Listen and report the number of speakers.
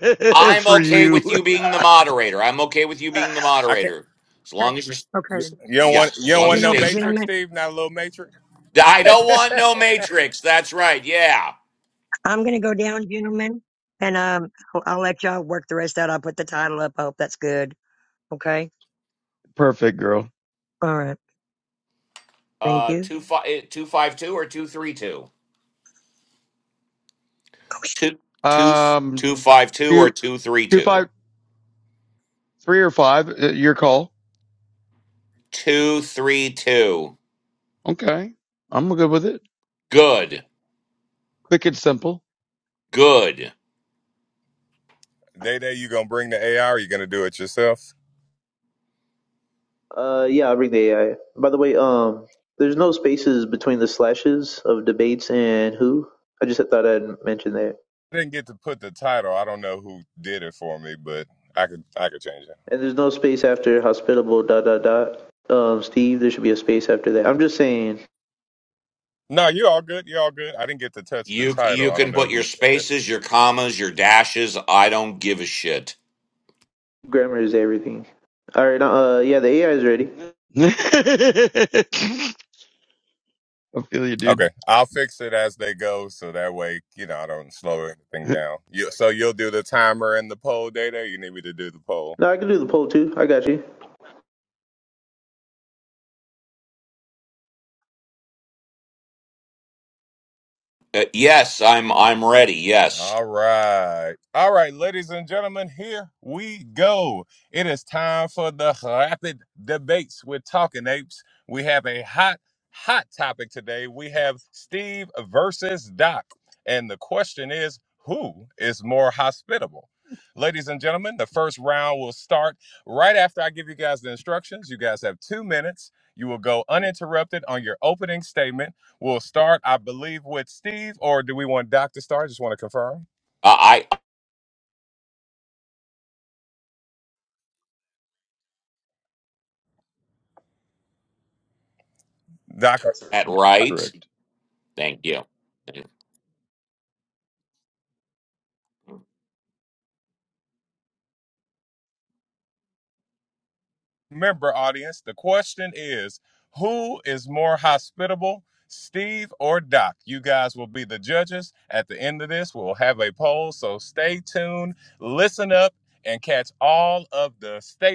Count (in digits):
5